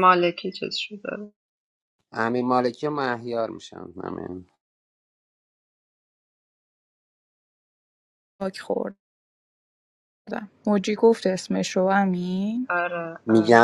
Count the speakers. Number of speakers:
three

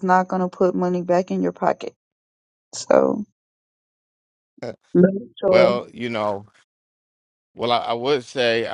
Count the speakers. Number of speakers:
two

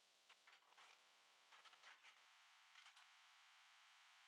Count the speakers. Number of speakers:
zero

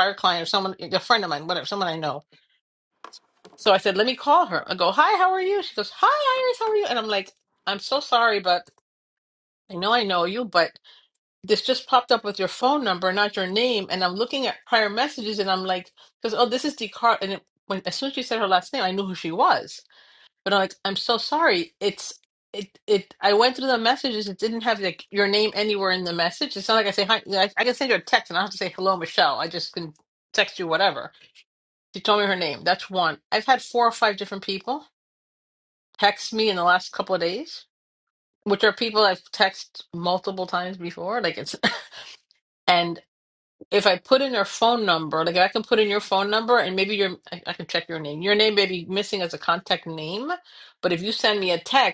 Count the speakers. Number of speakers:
one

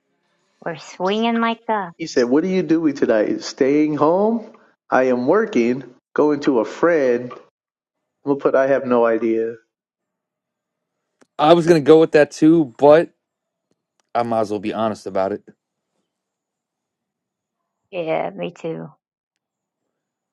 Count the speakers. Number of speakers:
three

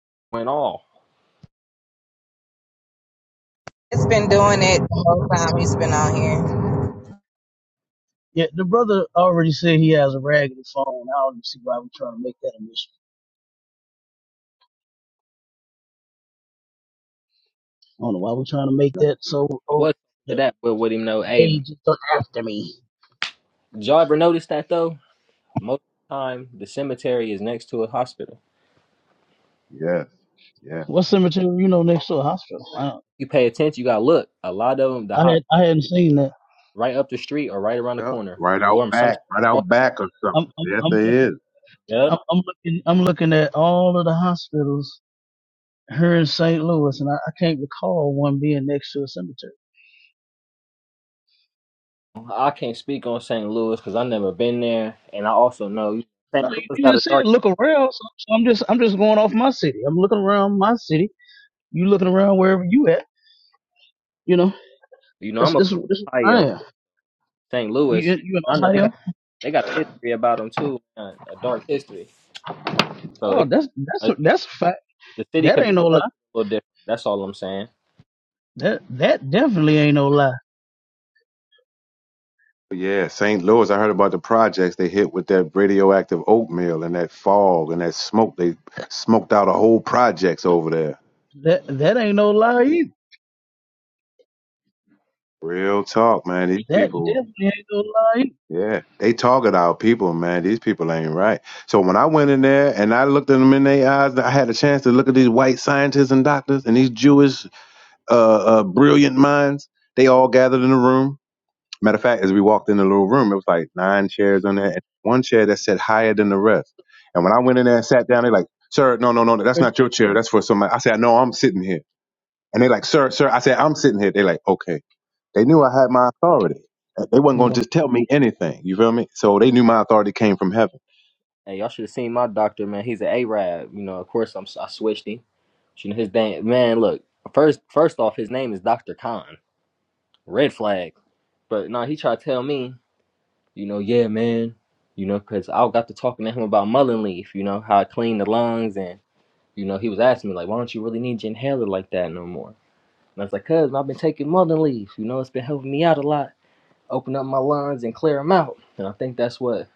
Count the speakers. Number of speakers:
four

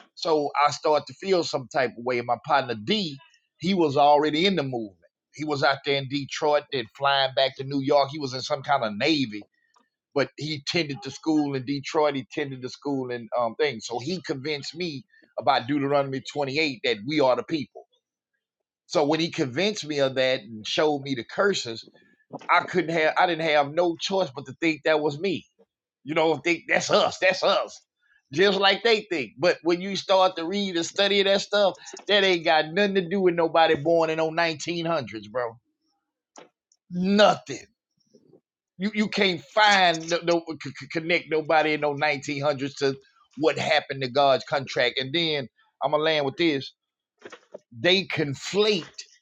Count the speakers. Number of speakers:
one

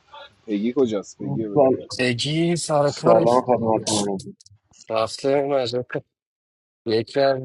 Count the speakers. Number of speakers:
three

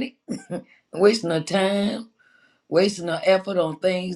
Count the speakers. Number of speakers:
one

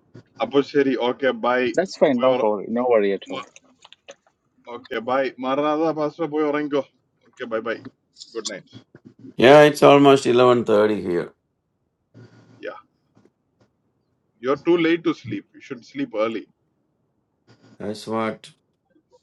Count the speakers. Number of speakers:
three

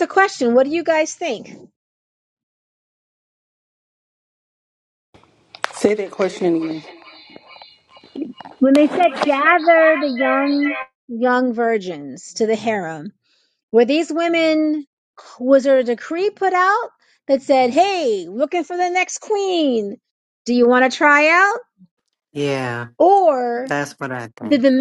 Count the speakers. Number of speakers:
three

